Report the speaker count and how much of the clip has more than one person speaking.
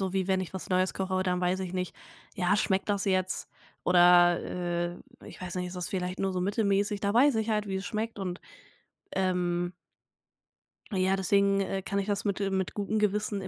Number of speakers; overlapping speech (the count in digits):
1, no overlap